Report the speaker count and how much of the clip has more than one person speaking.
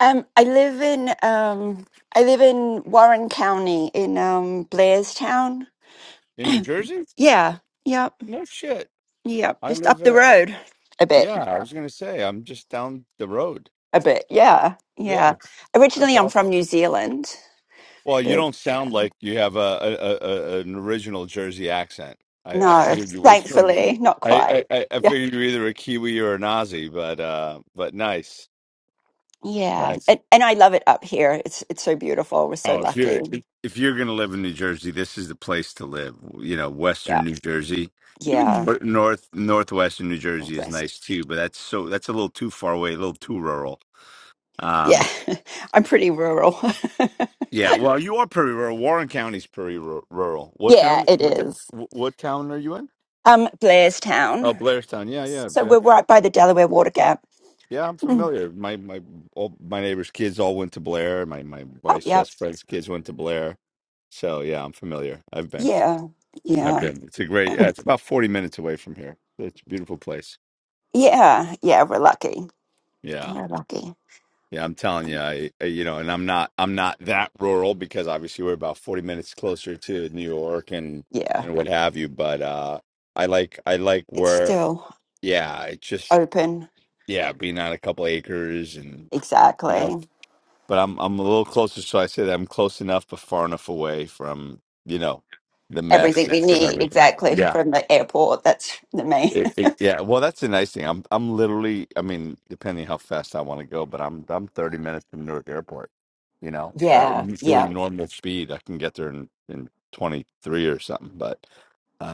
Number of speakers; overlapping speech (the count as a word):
two, about 9%